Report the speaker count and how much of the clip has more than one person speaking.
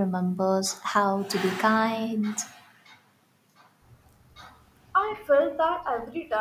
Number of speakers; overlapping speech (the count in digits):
2, no overlap